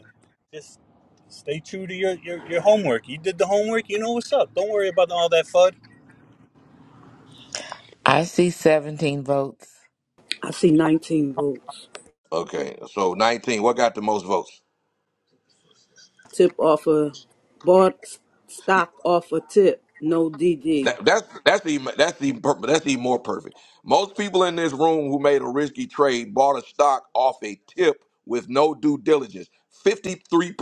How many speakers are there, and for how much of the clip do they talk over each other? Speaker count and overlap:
four, under 1%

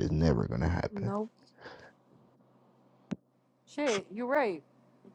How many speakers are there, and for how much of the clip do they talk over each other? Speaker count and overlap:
two, about 6%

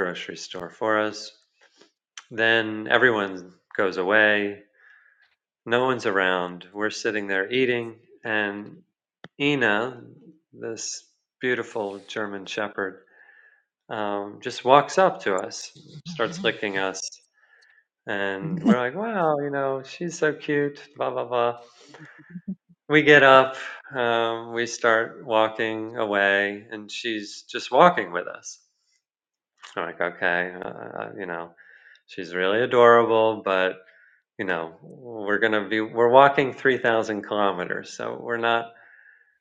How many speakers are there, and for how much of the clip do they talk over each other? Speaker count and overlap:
one, no overlap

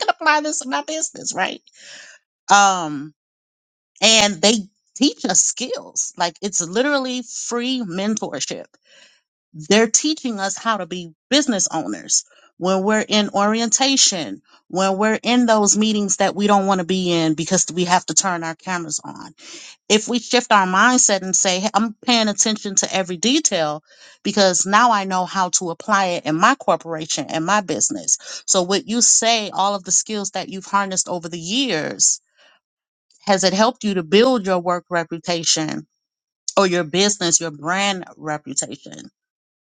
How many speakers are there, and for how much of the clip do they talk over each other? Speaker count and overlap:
one, no overlap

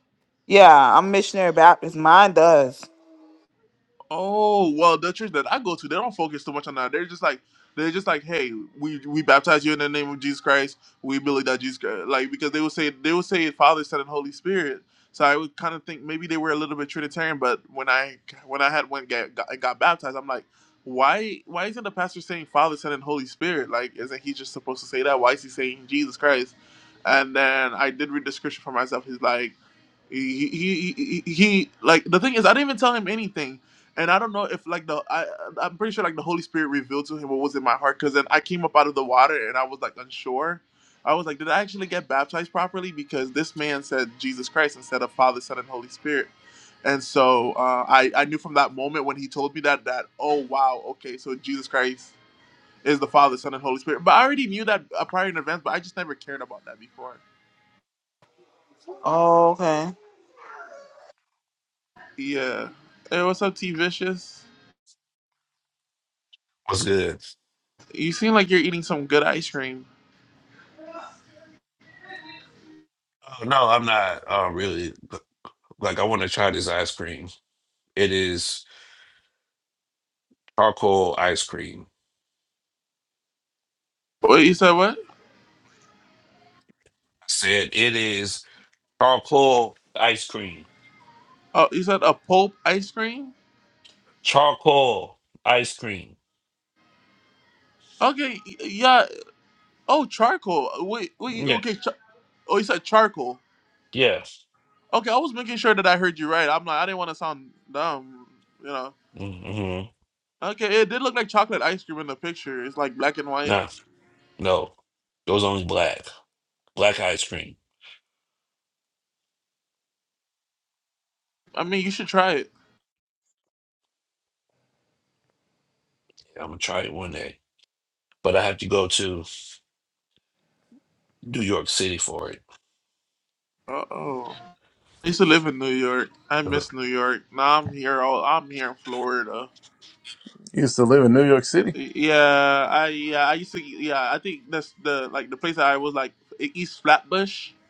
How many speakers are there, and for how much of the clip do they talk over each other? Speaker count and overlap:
four, under 1%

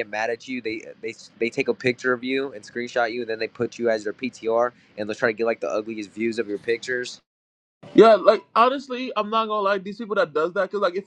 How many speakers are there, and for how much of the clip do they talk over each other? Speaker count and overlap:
two, no overlap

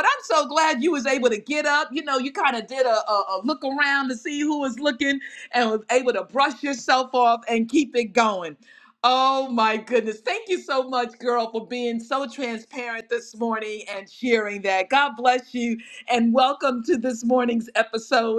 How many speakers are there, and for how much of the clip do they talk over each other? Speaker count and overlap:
one, no overlap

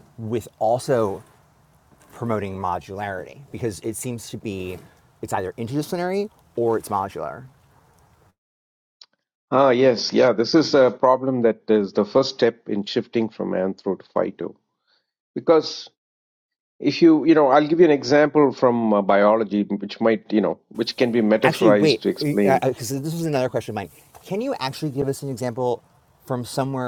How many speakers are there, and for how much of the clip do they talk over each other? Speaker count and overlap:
two, about 4%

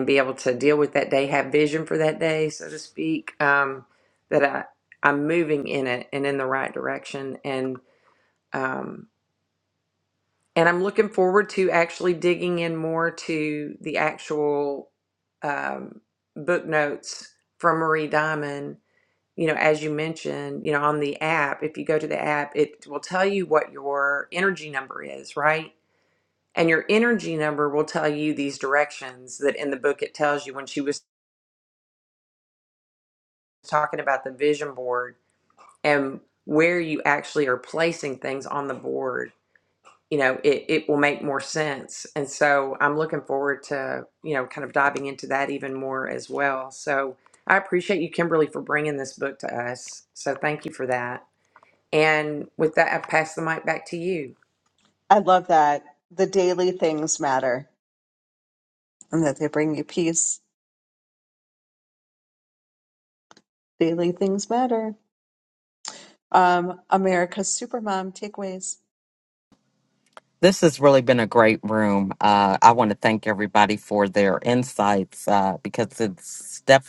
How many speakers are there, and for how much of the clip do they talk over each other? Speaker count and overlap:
three, no overlap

